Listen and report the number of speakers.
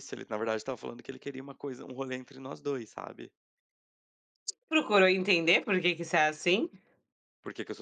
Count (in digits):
2